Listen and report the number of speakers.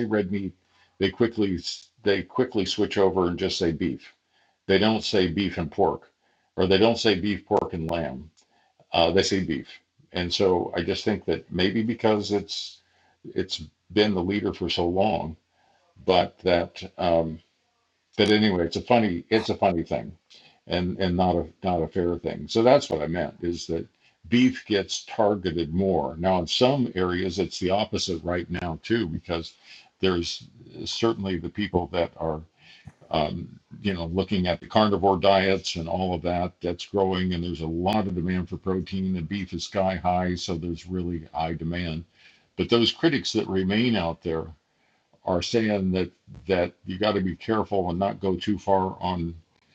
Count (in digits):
1